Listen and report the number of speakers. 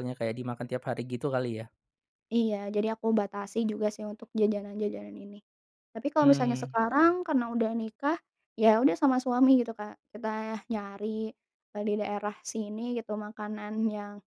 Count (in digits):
2